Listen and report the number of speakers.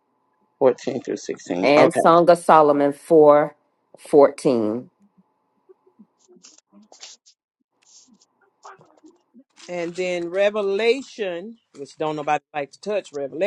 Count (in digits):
3